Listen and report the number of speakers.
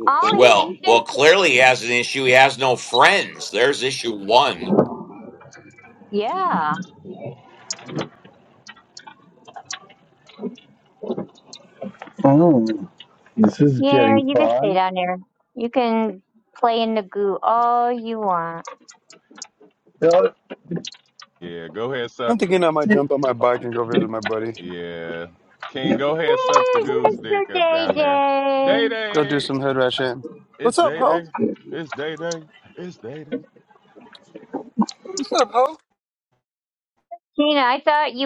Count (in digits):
5